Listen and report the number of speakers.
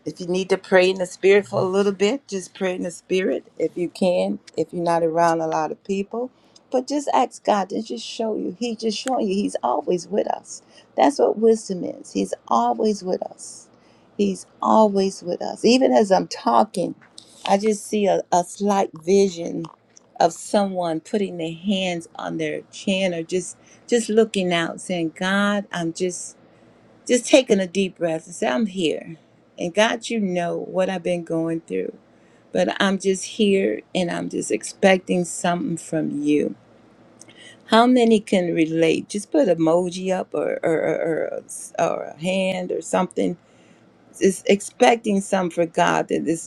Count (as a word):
one